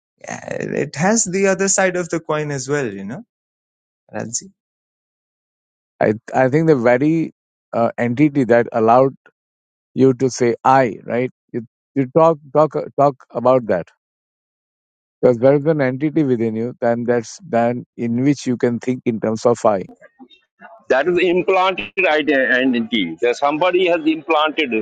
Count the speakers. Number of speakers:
3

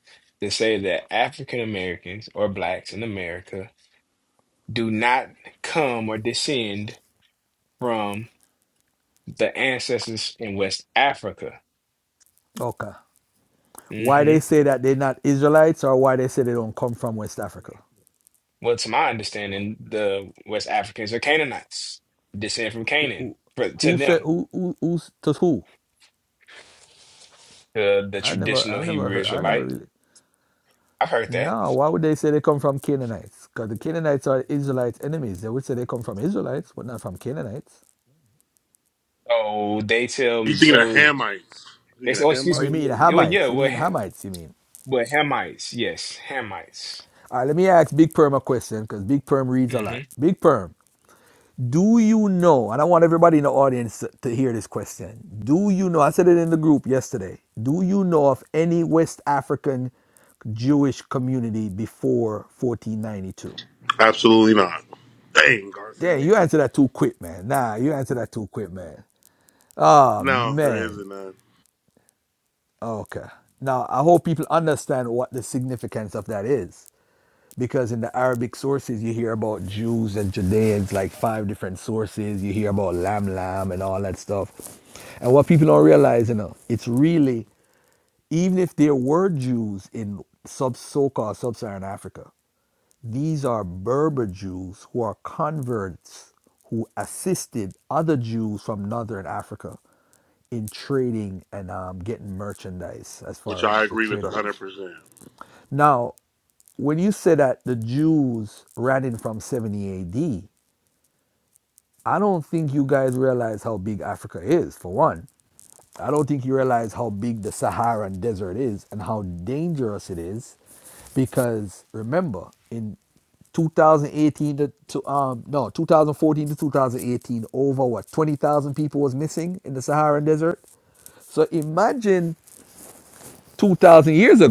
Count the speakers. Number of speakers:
3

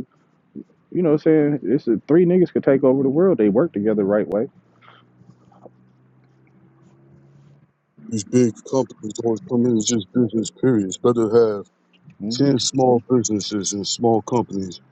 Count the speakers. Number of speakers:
2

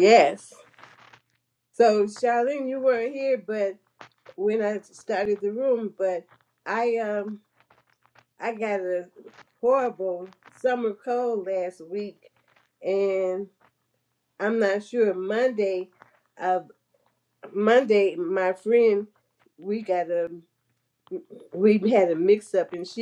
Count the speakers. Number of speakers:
1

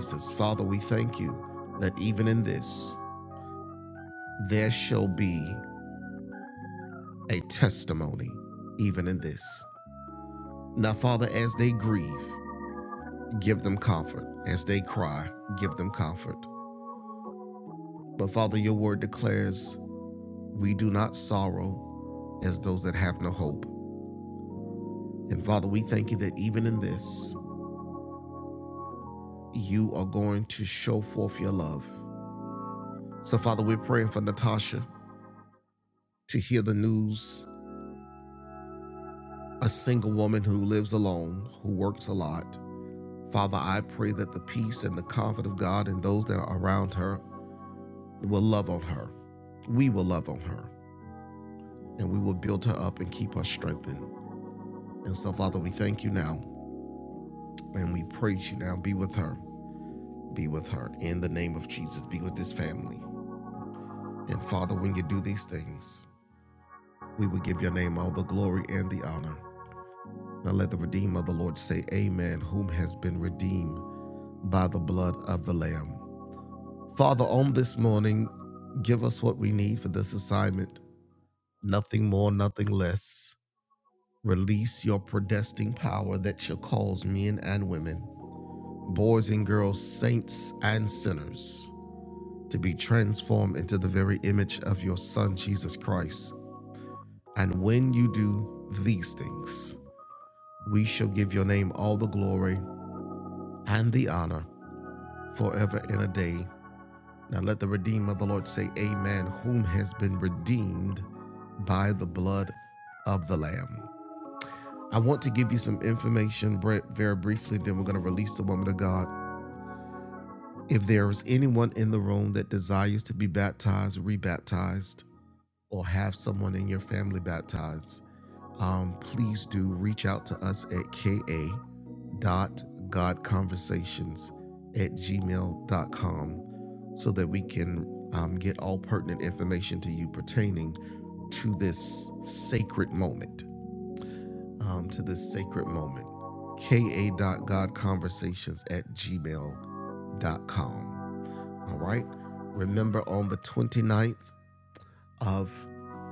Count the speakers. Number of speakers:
1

